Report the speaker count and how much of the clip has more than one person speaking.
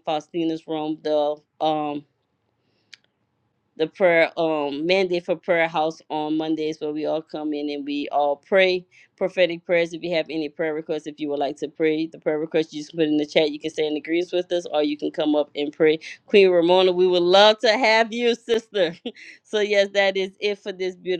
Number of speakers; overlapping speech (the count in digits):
1, no overlap